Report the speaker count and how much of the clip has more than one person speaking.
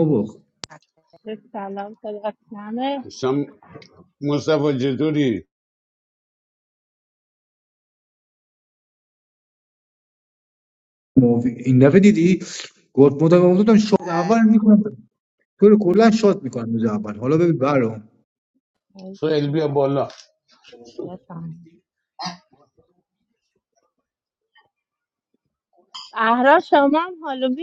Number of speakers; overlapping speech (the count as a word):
three, under 1%